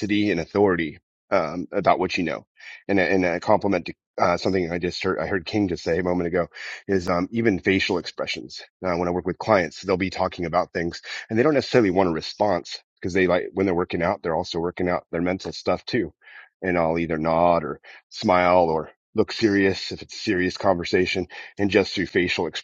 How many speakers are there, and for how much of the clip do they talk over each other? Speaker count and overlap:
1, no overlap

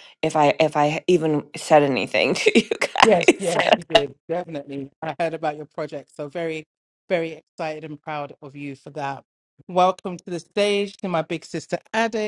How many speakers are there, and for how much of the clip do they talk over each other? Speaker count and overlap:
2, about 5%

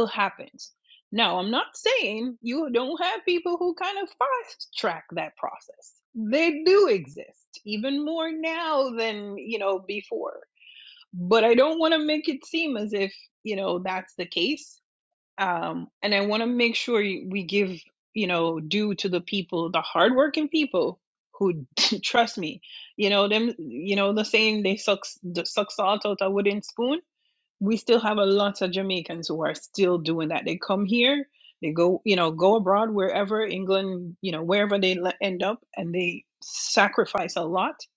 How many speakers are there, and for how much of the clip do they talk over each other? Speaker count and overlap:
1, no overlap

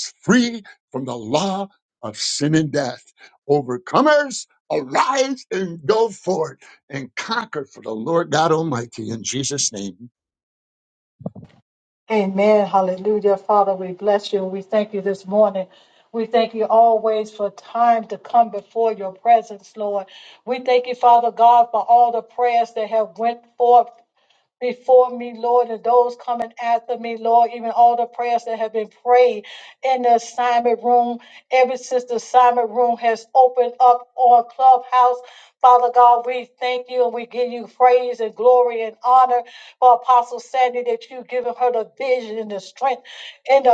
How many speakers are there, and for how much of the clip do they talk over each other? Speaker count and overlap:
2, no overlap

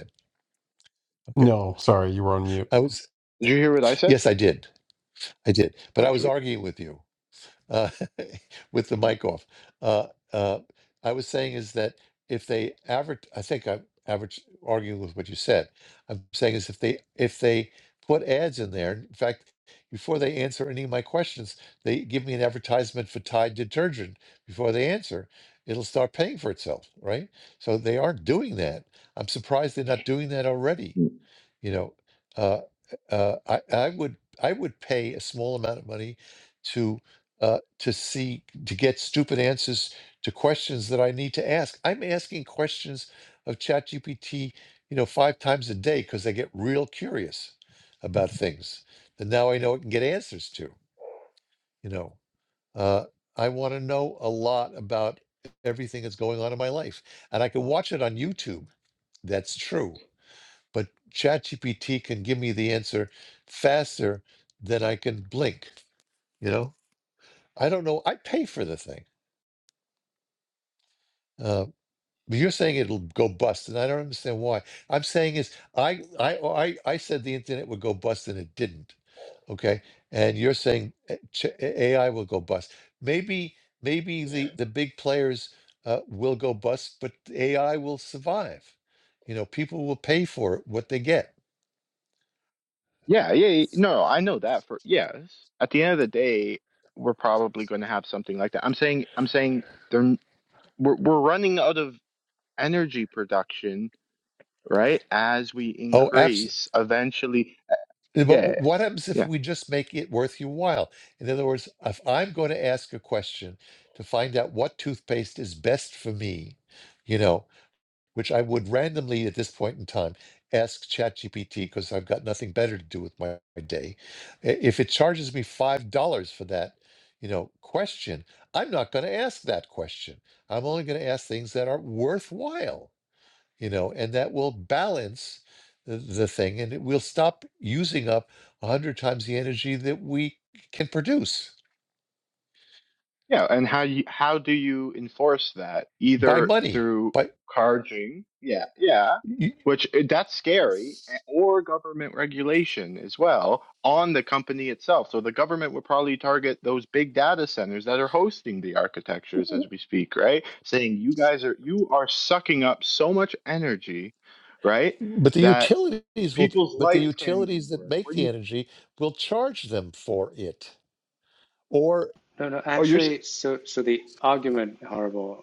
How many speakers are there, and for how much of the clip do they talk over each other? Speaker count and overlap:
4, about 3%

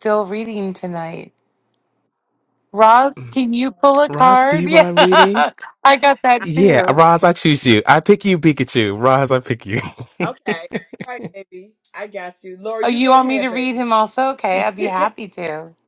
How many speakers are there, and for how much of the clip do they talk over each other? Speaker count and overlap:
3, about 15%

